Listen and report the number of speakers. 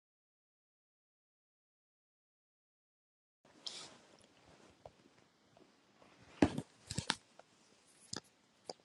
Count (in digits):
0